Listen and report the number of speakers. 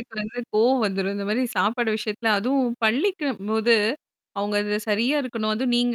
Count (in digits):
1